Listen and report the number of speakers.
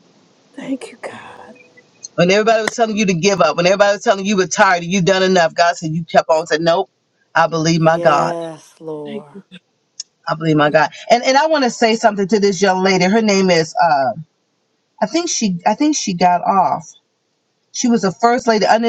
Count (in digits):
3